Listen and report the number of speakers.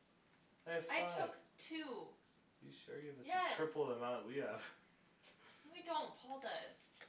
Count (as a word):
two